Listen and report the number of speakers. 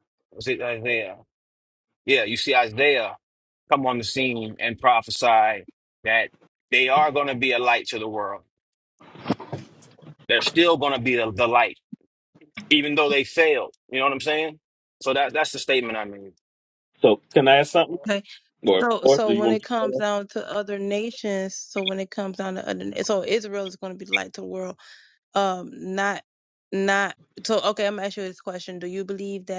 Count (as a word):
three